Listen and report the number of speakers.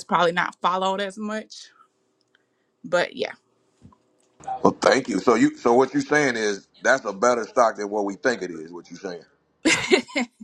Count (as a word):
two